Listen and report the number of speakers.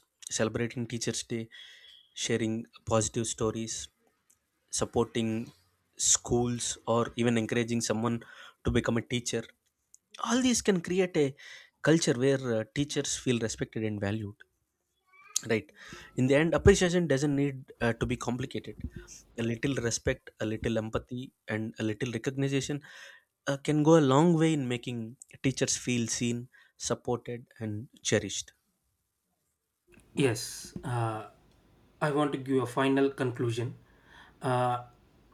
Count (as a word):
two